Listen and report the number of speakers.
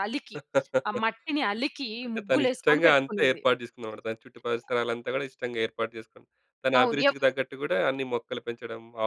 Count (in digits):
2